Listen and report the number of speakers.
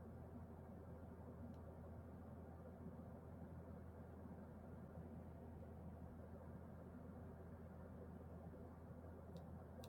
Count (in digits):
0